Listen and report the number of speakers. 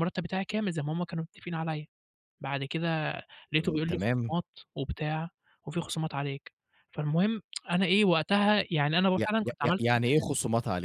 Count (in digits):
2